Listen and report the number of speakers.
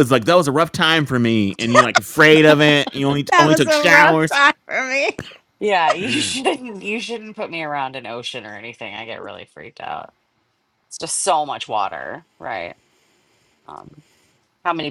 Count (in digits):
3